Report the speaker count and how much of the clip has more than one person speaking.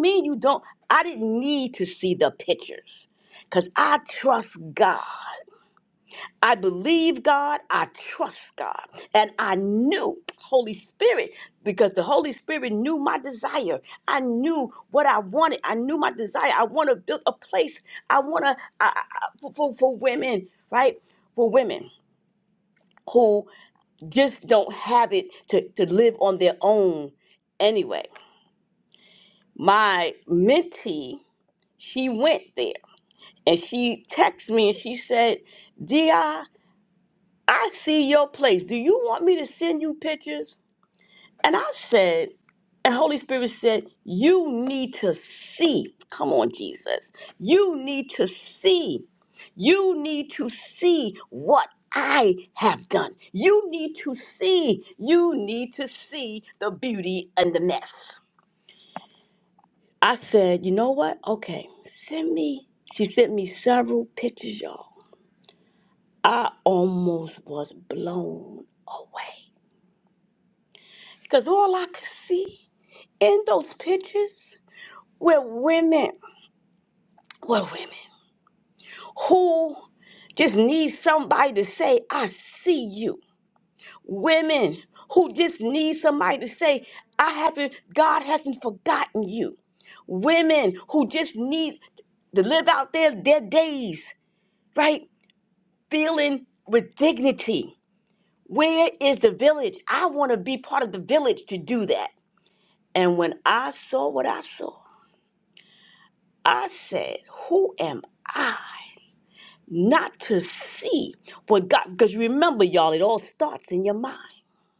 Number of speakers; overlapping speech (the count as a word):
one, no overlap